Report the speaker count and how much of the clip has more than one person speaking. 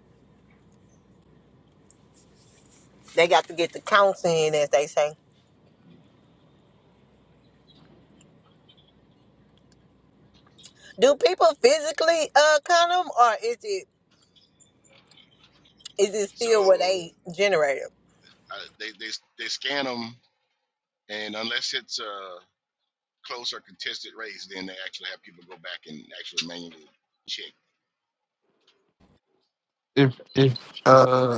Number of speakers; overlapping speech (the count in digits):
3, about 2%